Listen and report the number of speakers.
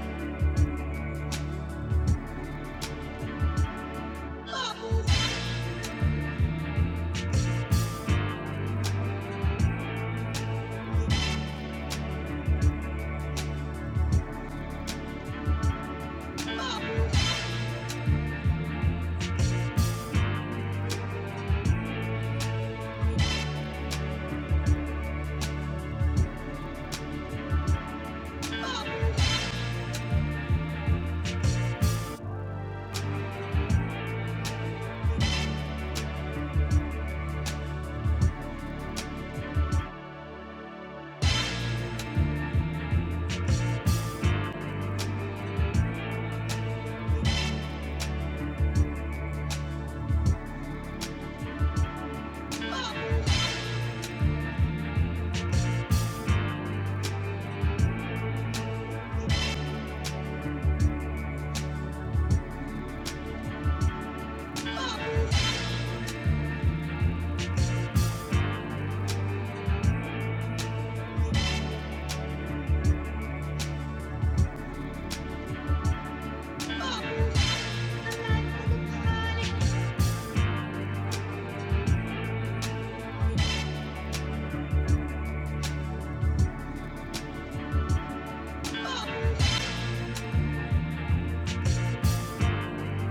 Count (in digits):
0